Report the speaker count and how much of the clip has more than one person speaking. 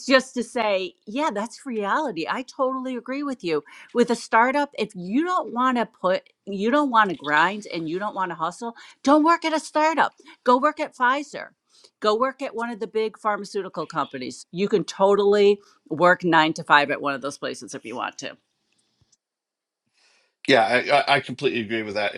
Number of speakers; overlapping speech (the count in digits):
2, no overlap